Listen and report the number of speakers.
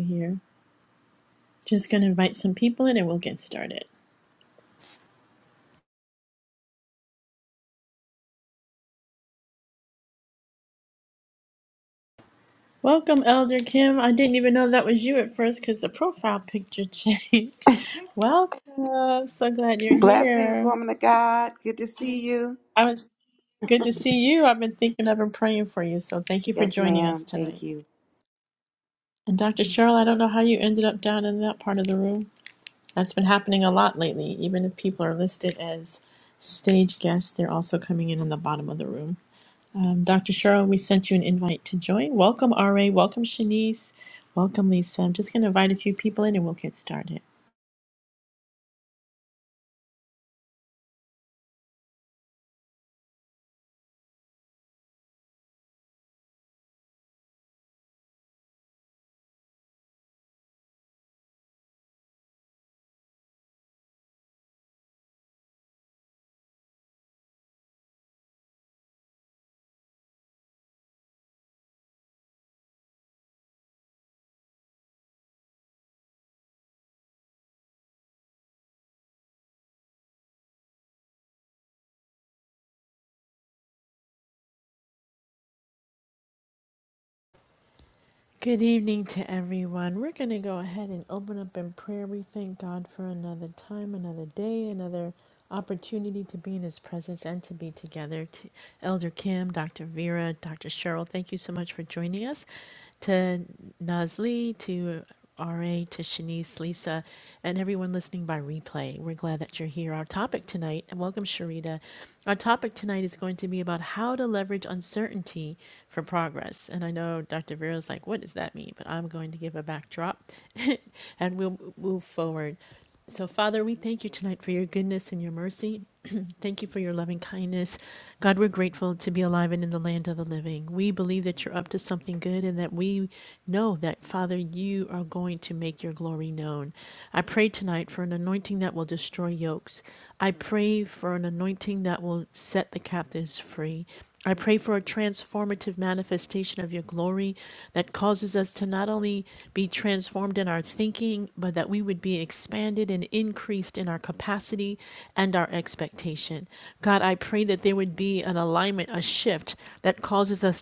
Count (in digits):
2